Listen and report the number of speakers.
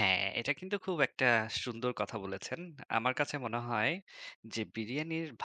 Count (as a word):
one